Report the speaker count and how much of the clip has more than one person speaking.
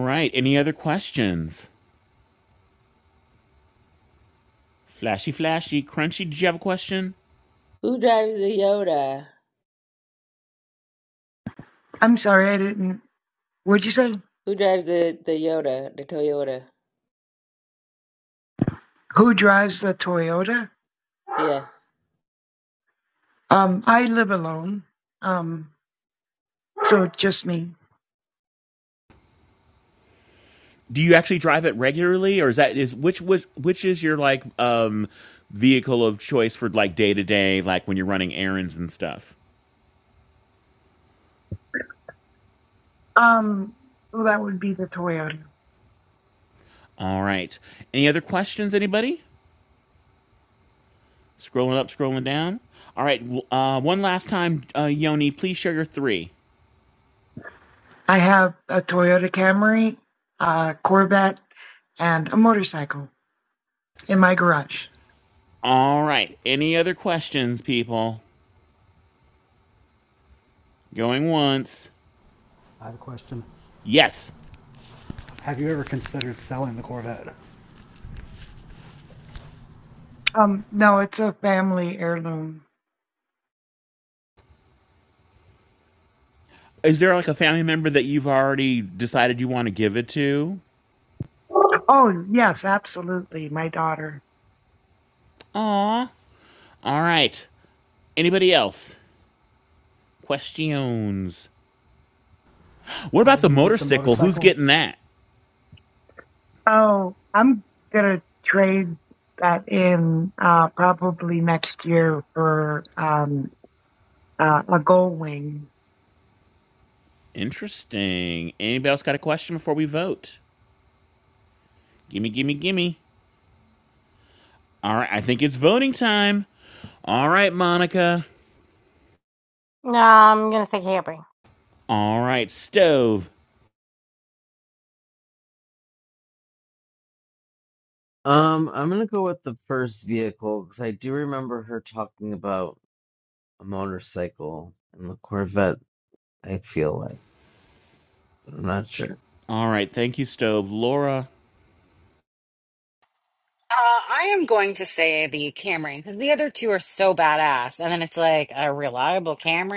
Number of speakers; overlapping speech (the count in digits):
7, about 1%